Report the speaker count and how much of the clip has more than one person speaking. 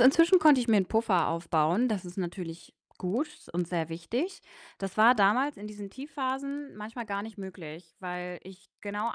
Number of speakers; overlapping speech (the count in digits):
1, no overlap